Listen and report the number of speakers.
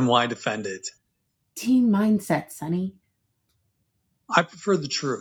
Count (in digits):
2